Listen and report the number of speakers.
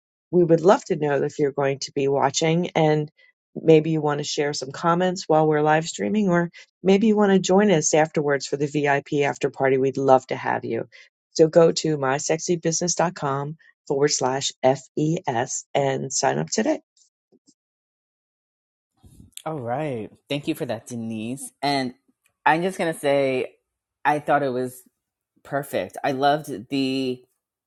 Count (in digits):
2